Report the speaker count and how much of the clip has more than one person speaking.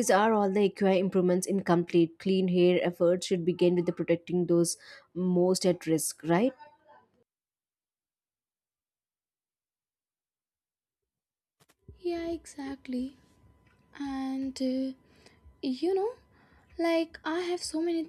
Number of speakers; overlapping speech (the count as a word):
two, no overlap